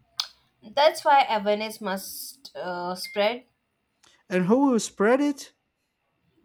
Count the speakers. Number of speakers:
two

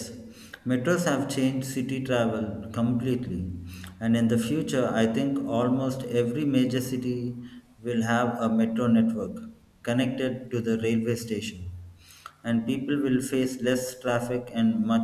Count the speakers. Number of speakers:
one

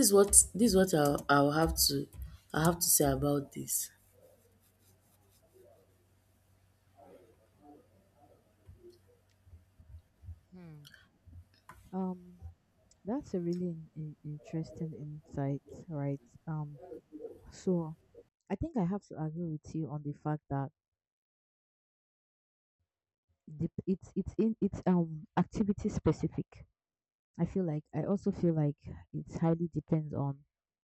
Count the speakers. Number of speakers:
two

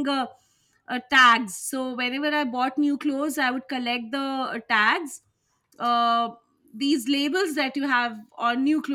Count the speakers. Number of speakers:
one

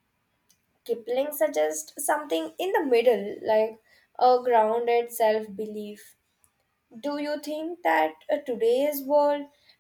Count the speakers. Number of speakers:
one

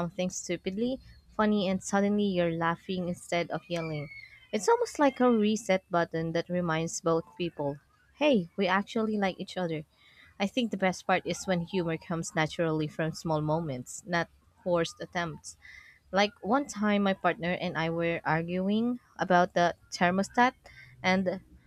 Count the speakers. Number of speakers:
one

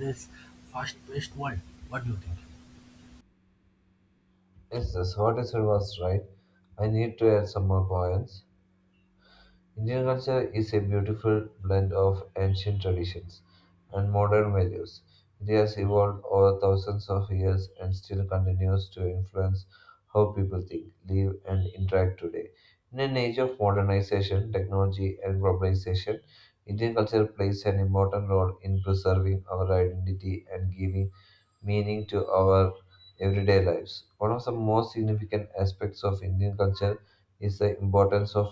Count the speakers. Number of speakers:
two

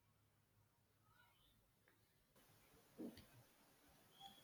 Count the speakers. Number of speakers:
zero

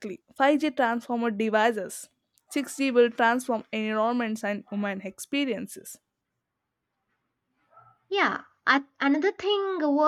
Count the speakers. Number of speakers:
two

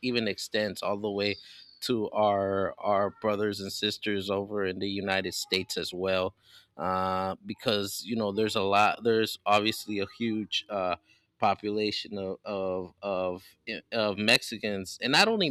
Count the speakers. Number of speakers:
one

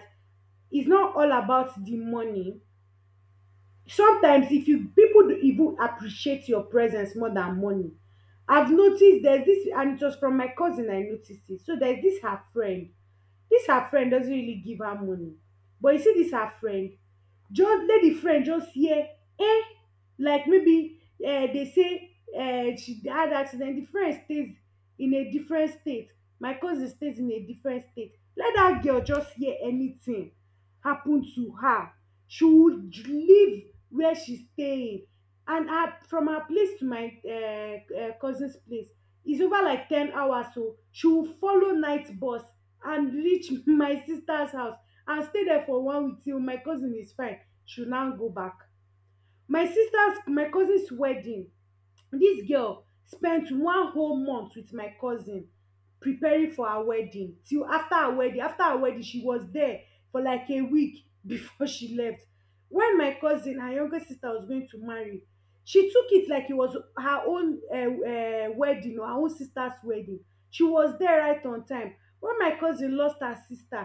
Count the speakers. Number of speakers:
one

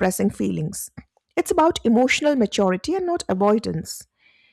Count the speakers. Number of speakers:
one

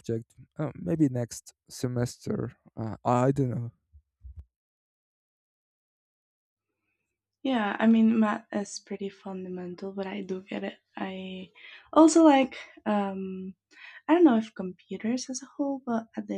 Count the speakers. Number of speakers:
two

